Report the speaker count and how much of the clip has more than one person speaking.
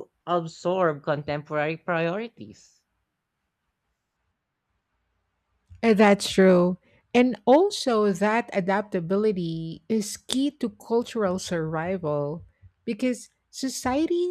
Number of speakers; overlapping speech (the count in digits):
2, no overlap